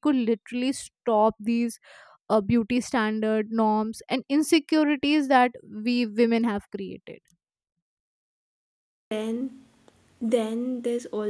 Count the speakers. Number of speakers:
2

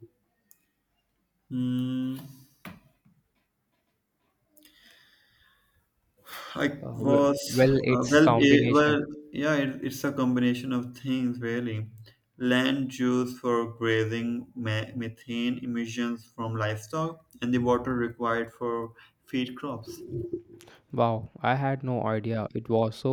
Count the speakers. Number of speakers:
2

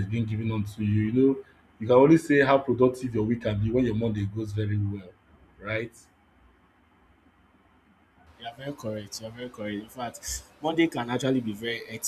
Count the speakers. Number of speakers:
2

